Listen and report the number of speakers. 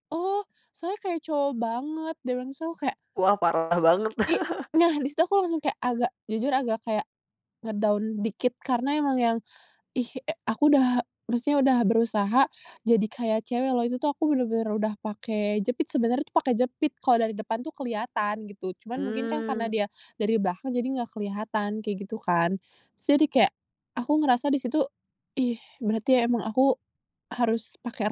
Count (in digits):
2